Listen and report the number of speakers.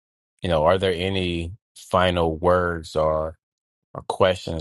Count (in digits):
1